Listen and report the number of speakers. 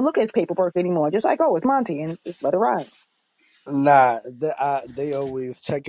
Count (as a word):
two